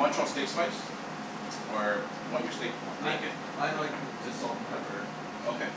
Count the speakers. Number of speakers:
2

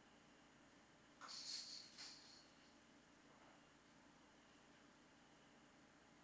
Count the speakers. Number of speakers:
0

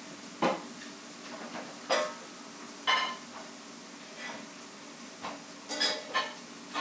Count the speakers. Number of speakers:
0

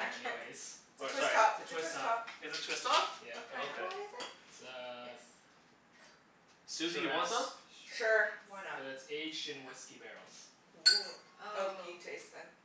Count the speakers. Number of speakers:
4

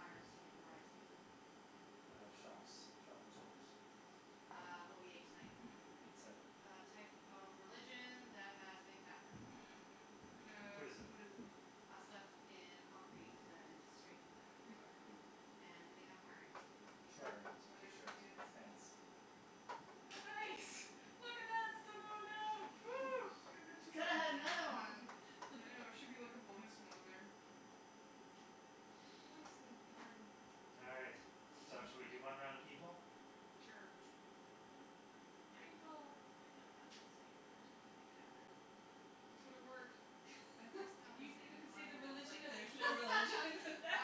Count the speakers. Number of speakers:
4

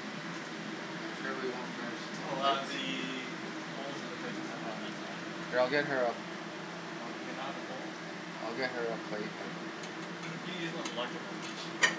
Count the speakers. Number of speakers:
2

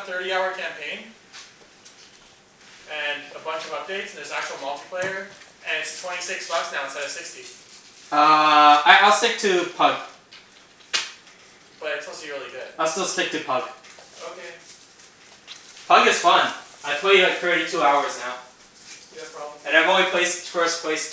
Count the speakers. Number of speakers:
2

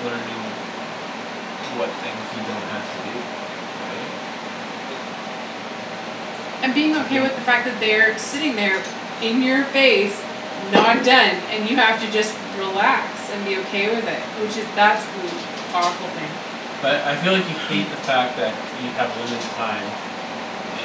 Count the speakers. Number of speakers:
2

